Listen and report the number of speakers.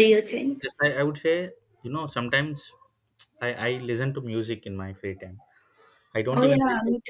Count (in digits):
2